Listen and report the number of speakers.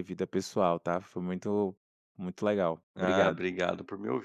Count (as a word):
two